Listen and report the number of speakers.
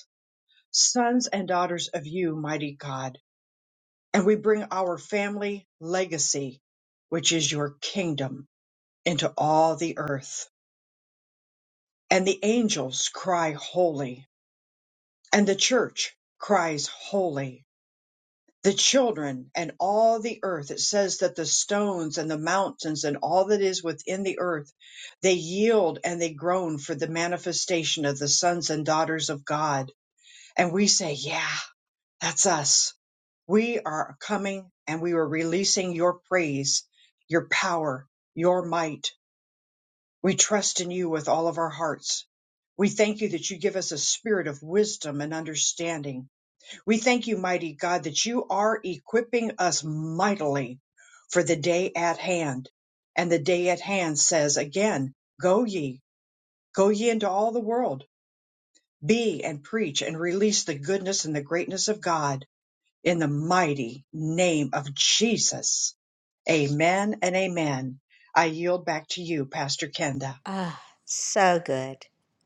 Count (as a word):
two